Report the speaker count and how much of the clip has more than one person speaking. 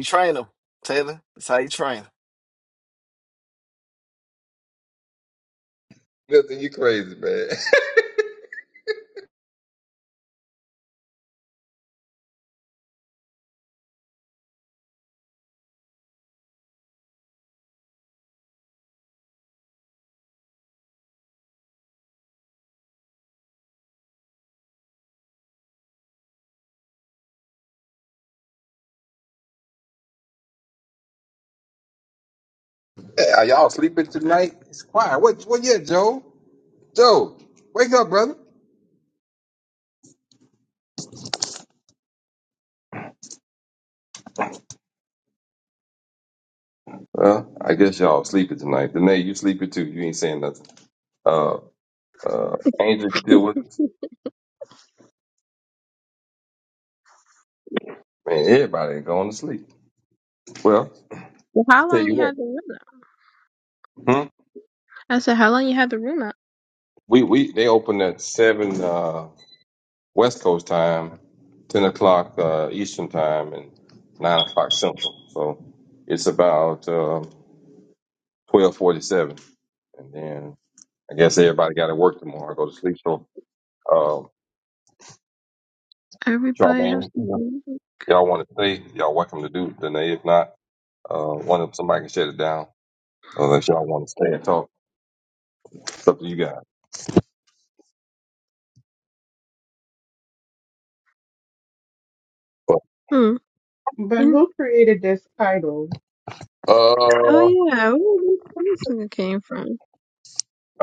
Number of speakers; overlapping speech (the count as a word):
four, about 2%